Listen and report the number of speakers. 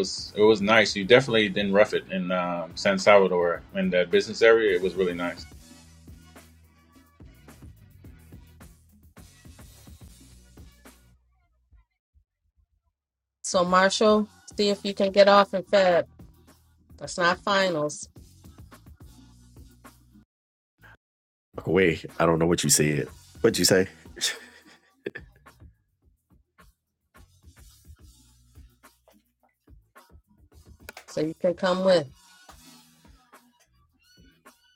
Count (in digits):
3